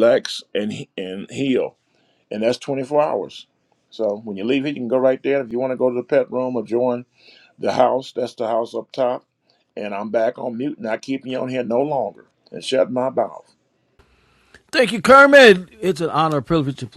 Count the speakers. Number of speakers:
2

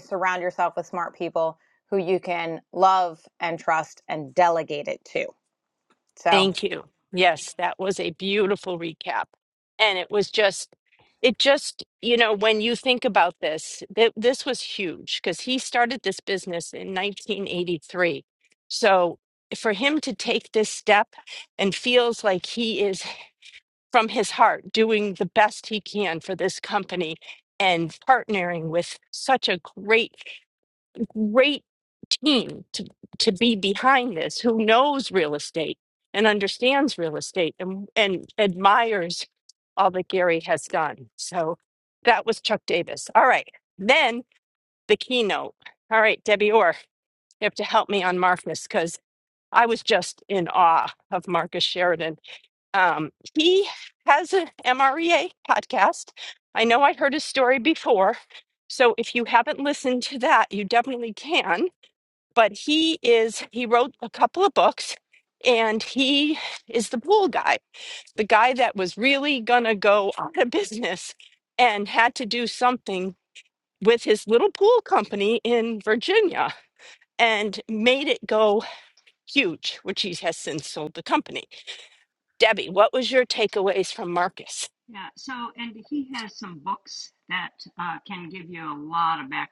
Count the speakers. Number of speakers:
3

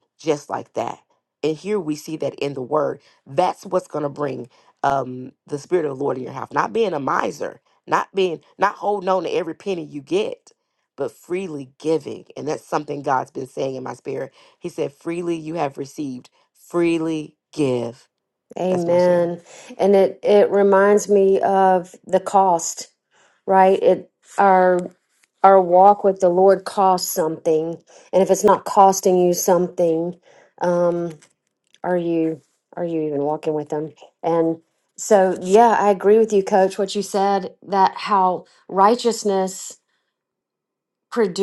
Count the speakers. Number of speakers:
2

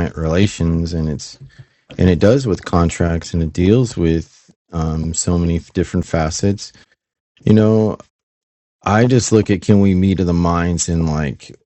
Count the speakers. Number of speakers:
1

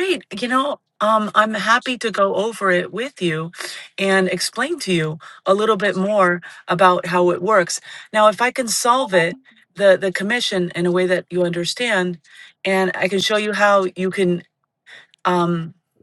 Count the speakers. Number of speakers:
1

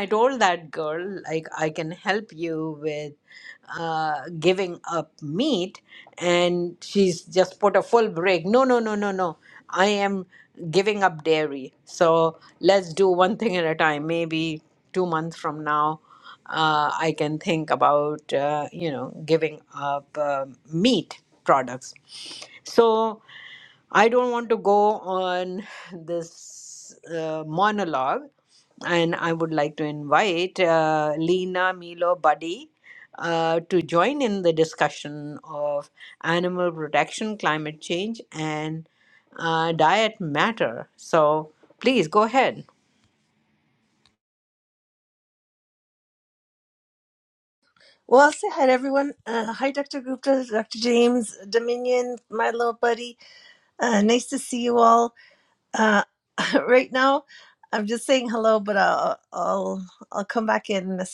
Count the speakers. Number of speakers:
2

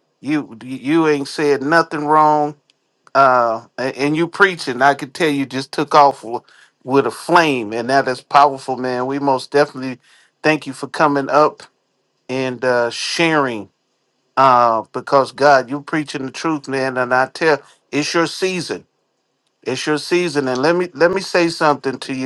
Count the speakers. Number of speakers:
1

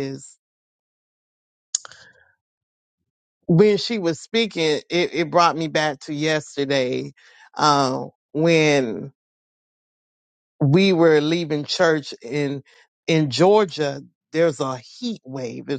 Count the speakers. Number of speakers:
1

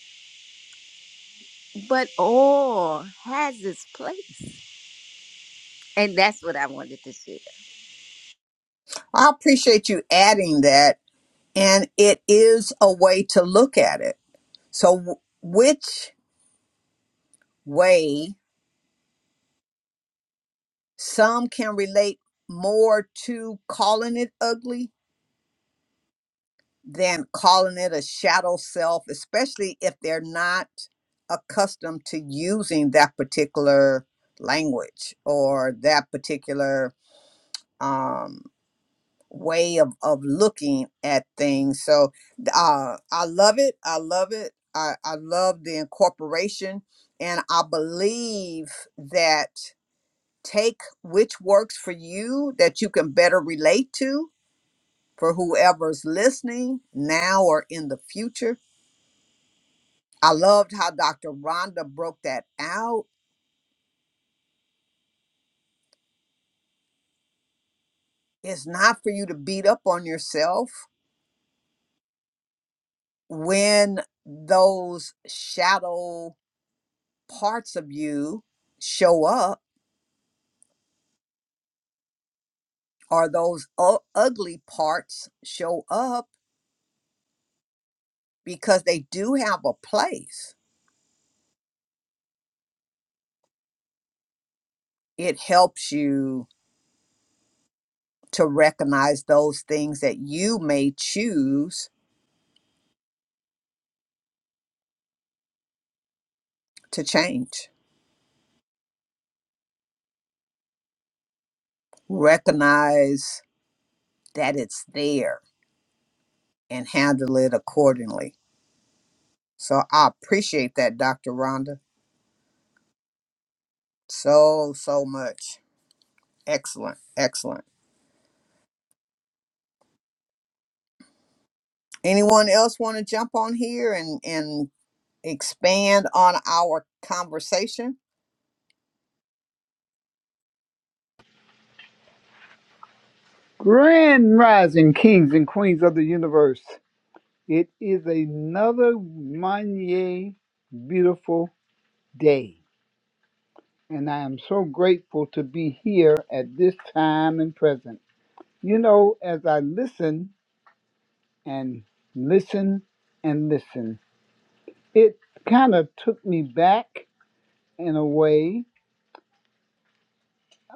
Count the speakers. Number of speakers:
3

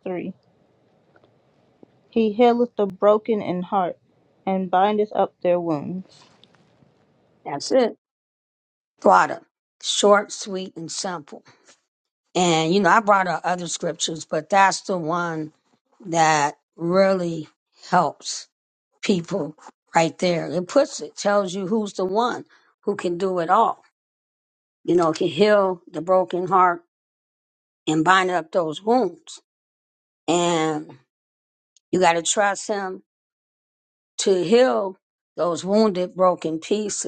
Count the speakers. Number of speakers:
2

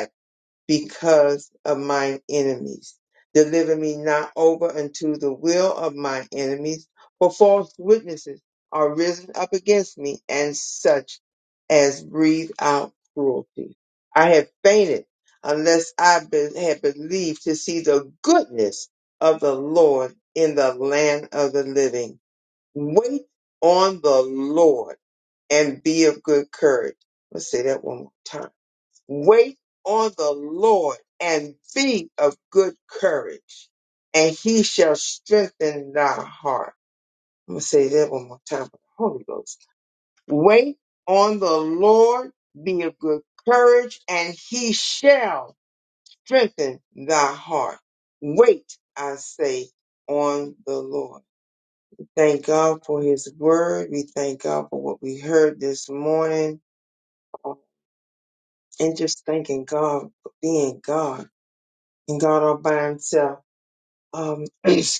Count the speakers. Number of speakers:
1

